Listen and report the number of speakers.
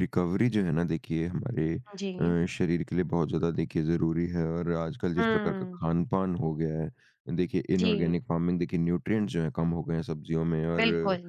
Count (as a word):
two